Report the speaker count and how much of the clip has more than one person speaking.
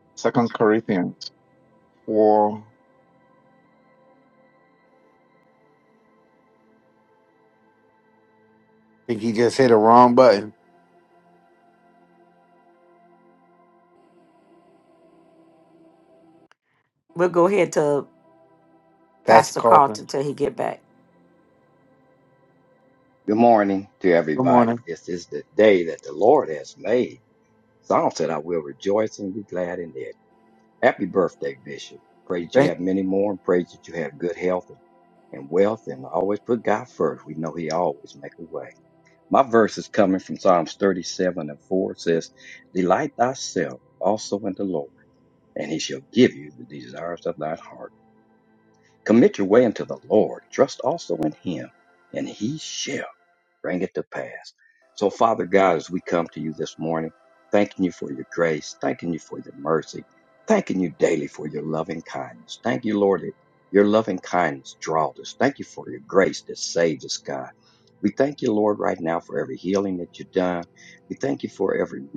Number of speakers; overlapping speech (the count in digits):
4, about 2%